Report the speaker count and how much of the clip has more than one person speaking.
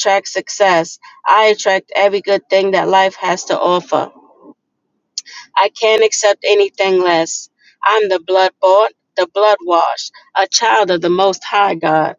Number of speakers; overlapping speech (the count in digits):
1, no overlap